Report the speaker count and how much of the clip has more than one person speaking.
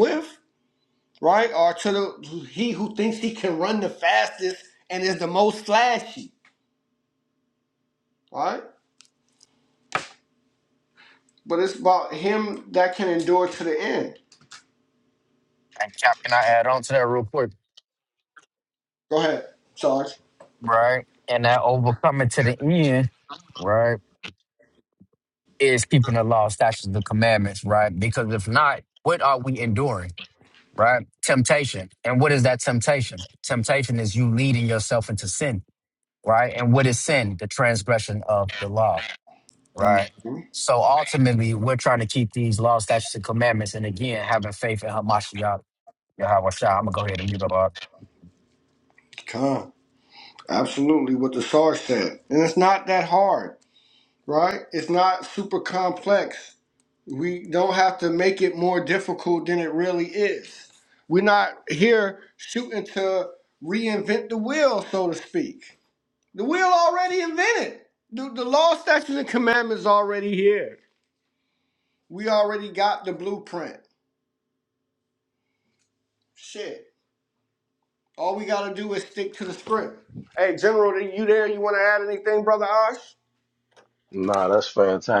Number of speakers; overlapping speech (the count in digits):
3, under 1%